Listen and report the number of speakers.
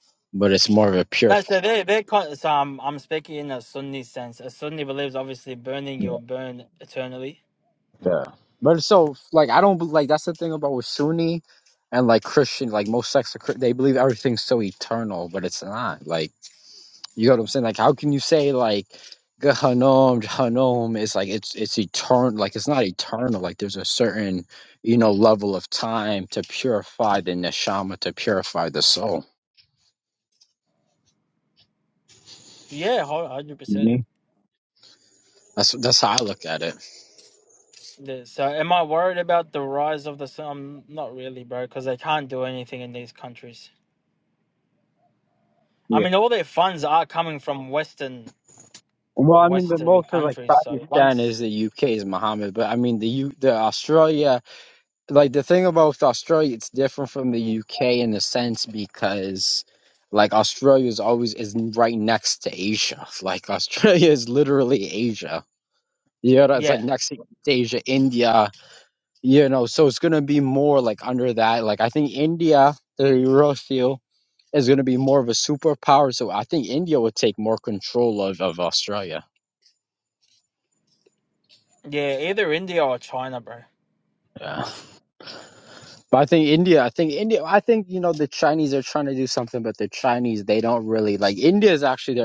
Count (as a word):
two